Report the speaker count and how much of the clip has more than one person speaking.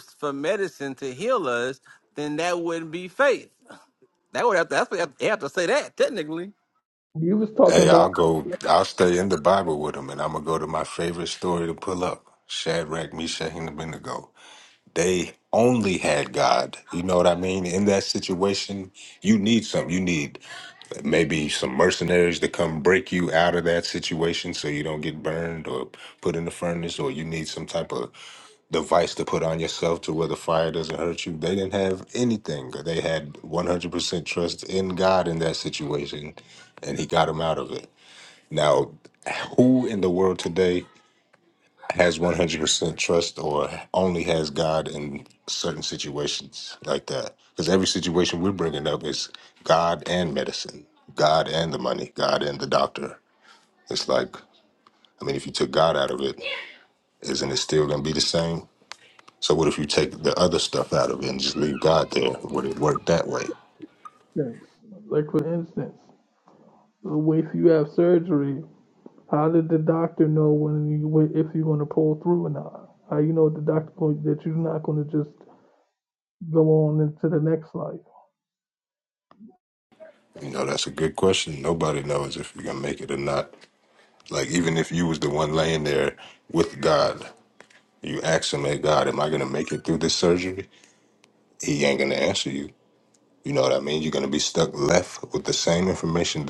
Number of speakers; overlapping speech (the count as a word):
three, under 1%